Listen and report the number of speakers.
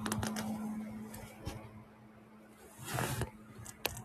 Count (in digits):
0